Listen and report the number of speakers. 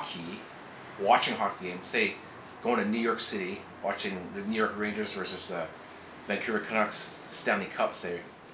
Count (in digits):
1